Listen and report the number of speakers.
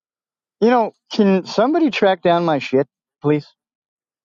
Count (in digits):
1